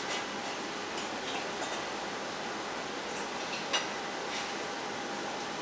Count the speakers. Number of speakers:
0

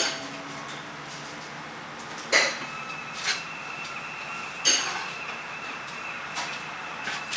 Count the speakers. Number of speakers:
0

